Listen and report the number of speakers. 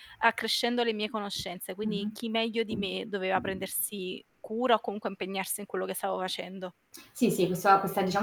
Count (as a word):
two